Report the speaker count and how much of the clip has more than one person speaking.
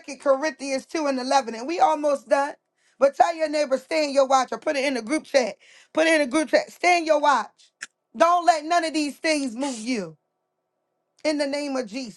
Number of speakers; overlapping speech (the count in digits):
1, no overlap